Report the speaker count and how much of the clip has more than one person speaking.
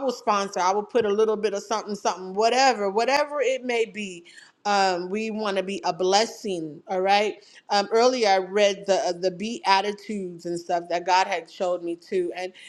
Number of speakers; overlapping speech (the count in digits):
1, no overlap